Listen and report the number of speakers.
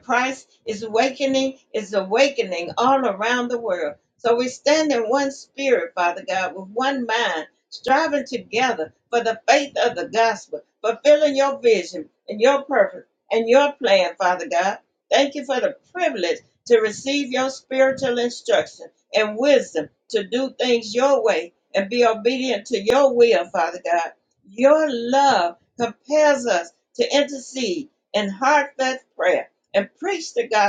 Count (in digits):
1